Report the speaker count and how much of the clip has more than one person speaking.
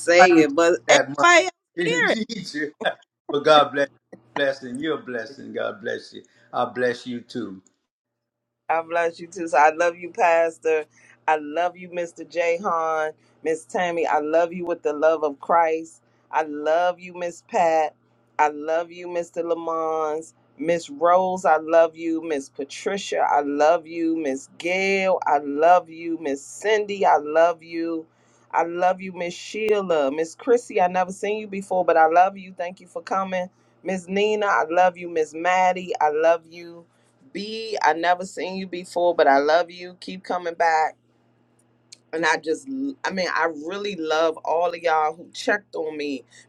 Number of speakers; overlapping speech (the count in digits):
2, about 2%